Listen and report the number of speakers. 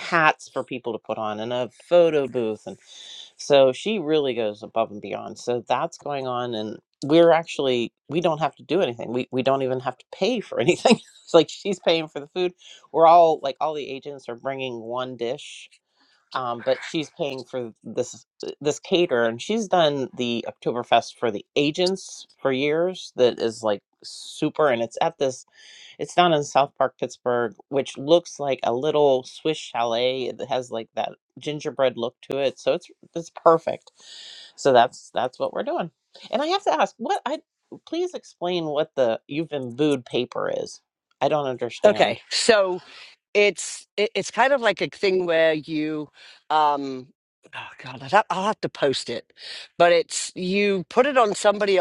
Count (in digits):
2